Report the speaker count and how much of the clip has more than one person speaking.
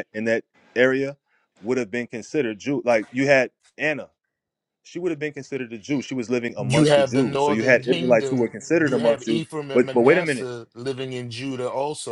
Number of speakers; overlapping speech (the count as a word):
two, about 26%